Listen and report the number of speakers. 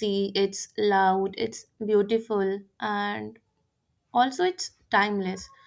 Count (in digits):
1